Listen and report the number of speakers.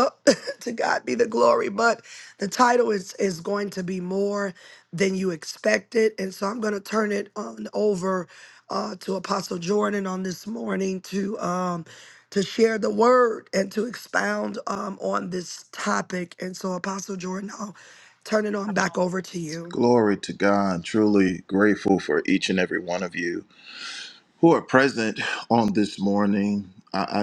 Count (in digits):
2